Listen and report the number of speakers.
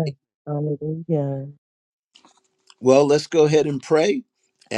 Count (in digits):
2